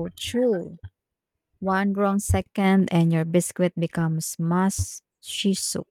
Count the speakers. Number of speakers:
1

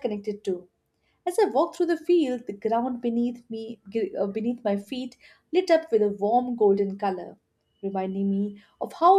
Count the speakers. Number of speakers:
1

